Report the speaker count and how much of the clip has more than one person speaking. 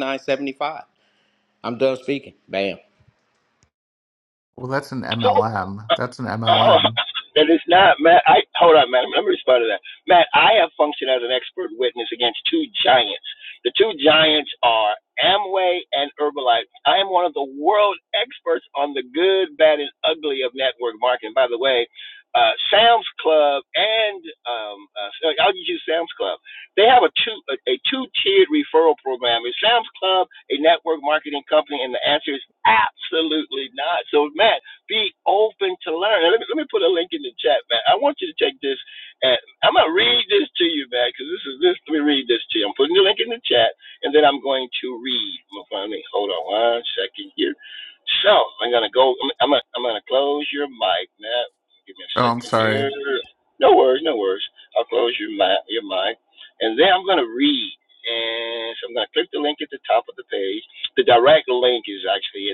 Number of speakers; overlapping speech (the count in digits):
3, about 2%